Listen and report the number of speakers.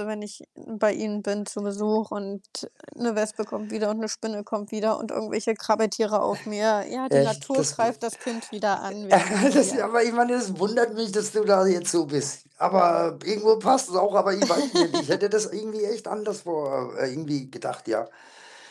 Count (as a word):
two